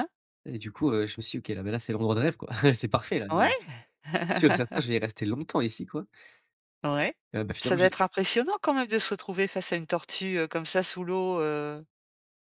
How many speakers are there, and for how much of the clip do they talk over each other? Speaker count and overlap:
2, about 4%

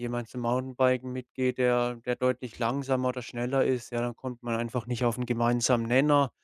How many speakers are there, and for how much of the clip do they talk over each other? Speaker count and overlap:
1, no overlap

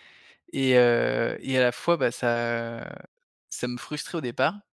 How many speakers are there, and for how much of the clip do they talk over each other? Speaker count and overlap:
1, no overlap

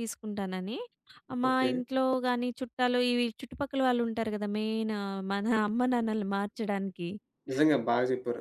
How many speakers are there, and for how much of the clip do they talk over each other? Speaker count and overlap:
2, about 4%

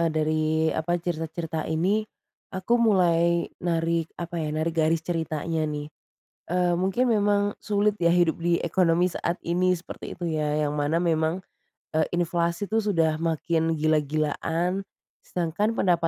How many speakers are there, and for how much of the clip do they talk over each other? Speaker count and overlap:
1, no overlap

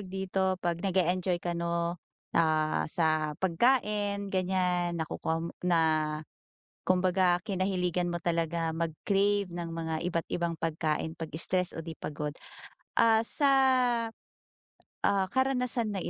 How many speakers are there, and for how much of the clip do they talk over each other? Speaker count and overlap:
1, no overlap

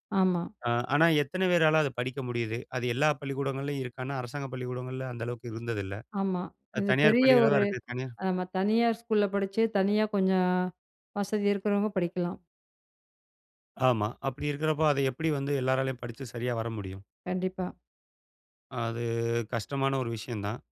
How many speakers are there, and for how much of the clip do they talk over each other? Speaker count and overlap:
2, about 4%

